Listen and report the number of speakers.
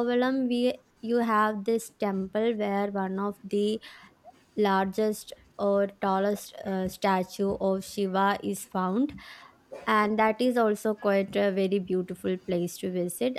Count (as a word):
one